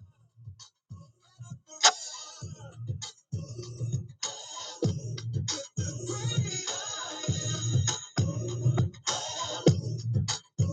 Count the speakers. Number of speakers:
0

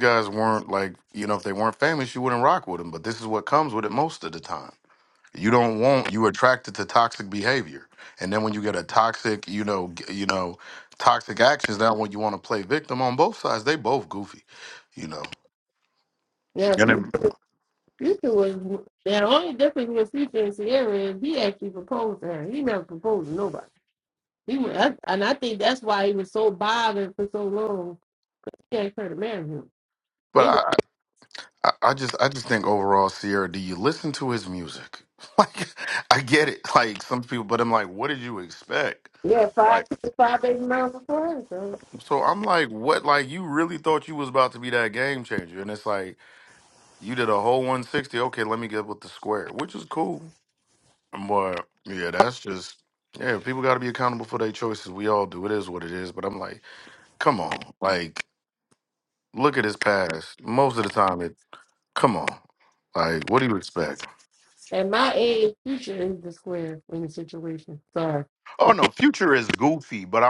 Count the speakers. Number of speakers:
2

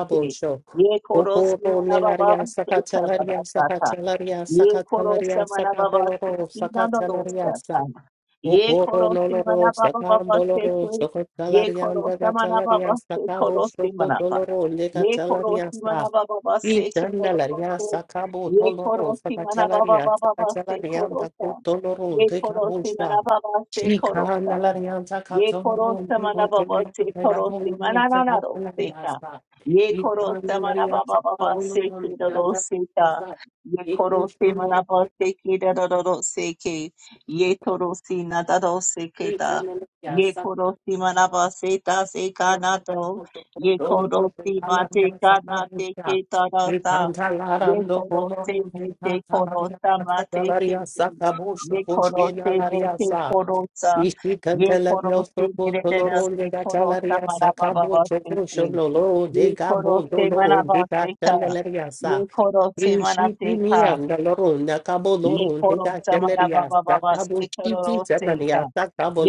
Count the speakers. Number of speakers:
2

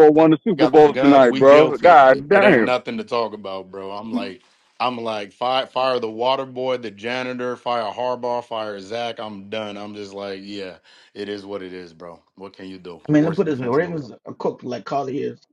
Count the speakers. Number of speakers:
3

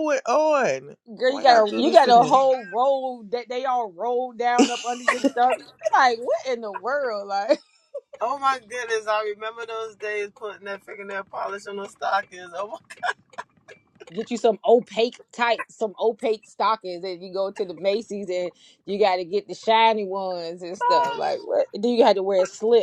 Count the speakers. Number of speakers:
3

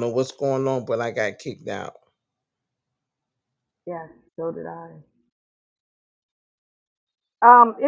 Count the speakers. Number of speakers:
2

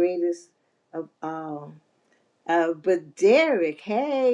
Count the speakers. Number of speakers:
1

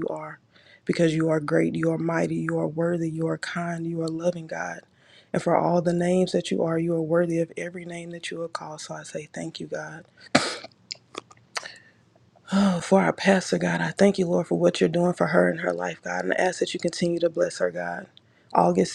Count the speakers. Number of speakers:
1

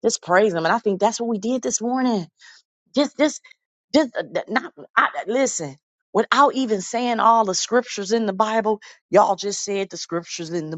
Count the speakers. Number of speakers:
1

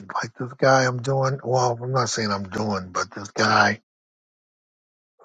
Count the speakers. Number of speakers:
1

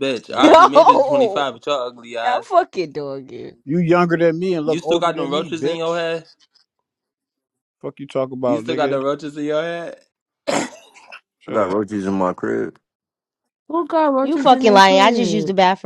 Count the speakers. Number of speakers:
5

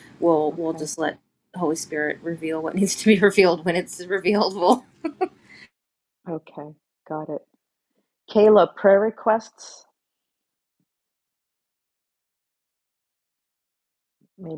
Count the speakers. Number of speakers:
2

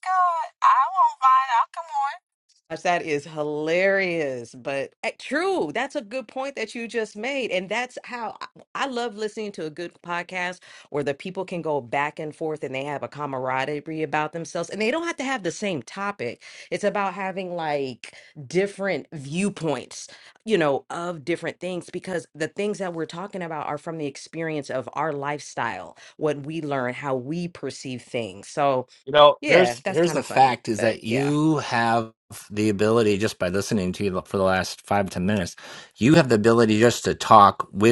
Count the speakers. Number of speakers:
3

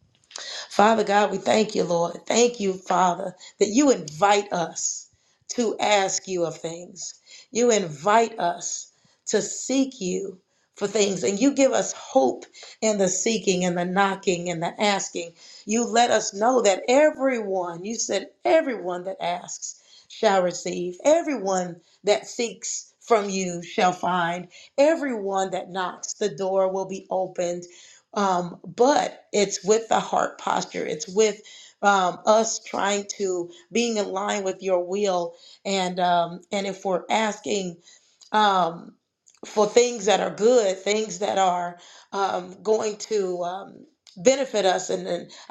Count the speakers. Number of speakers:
1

